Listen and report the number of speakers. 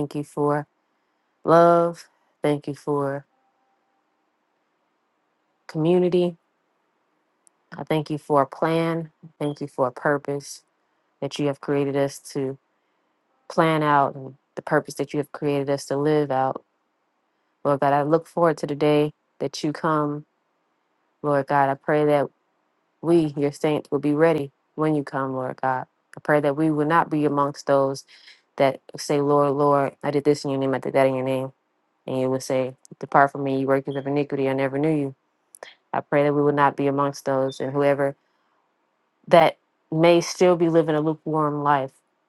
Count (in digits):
1